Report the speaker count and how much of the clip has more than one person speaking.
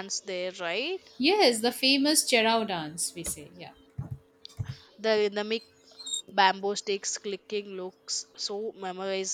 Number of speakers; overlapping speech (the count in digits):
2, no overlap